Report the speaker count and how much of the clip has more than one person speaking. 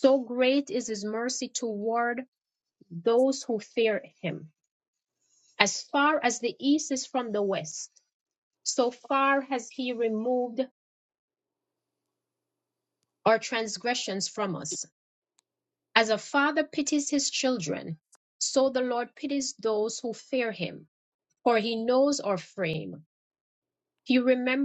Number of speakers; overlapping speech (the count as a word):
one, no overlap